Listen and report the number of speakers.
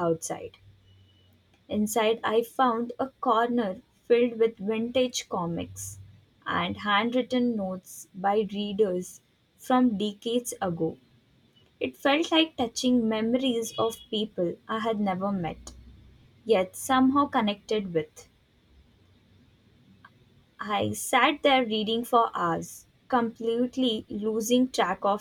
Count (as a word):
one